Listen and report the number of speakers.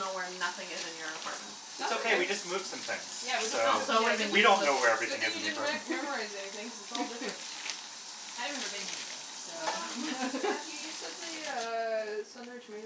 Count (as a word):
four